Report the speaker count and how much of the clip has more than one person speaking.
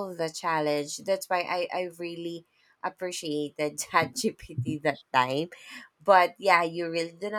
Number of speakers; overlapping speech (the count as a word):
one, no overlap